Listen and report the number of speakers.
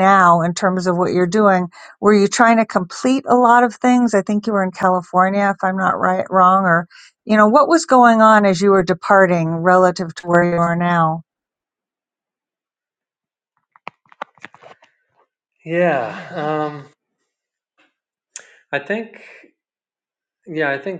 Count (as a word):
two